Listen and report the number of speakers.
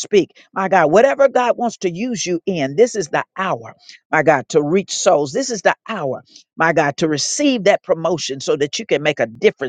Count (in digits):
1